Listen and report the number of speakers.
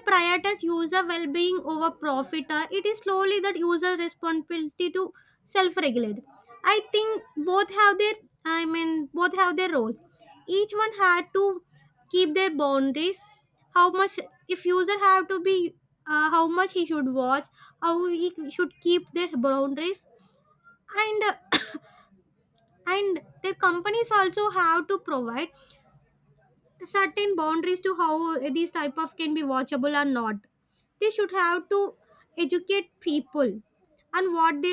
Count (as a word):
one